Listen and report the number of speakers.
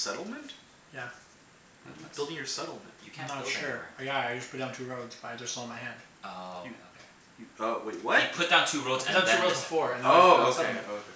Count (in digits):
3